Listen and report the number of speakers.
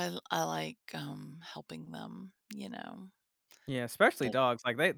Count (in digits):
2